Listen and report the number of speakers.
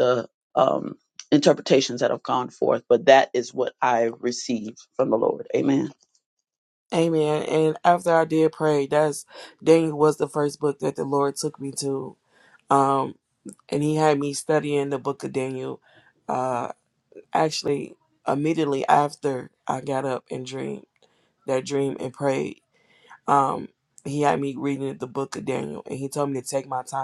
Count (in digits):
2